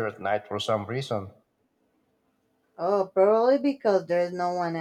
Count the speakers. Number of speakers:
2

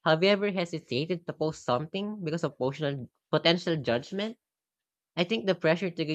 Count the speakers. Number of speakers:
1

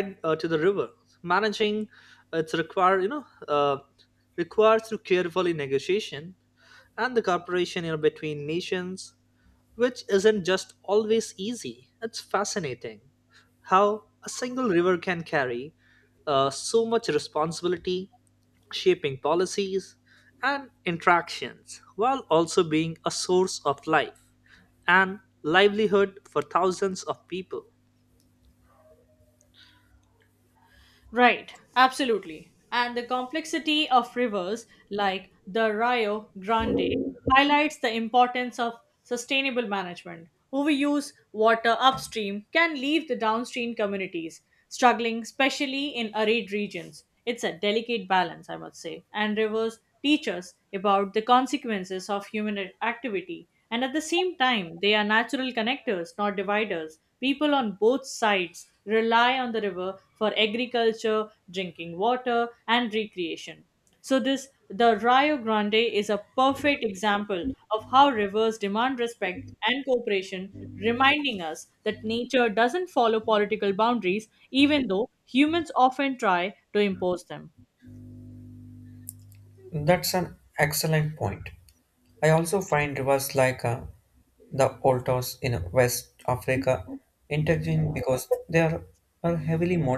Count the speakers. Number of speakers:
3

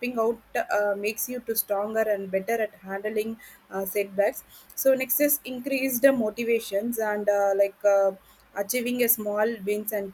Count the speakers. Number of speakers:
1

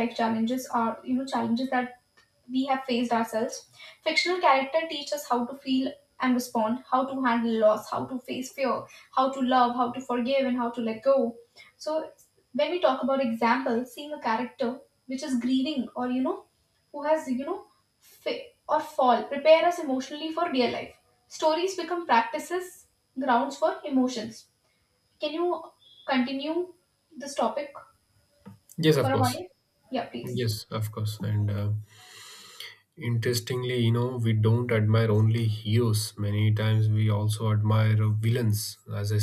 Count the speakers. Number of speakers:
2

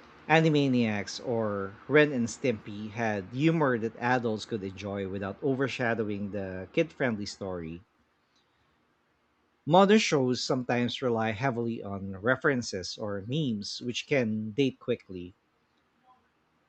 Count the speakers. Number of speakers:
1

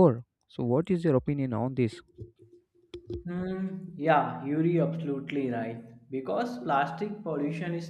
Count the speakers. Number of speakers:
2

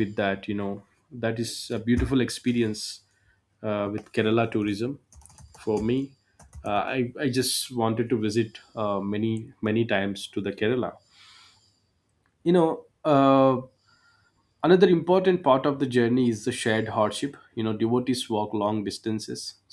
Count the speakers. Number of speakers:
1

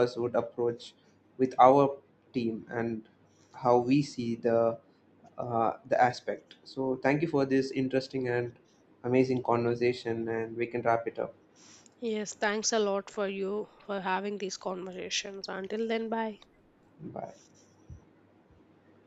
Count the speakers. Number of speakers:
2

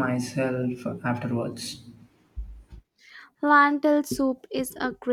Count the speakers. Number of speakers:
2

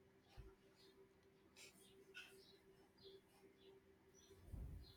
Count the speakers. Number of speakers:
0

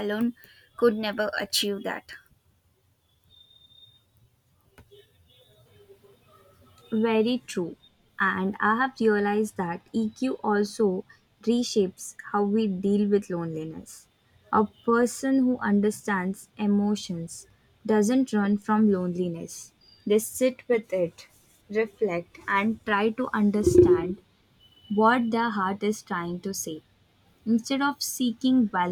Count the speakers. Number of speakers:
2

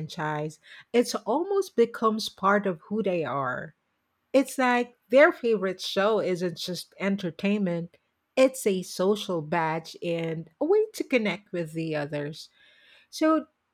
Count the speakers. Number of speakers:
1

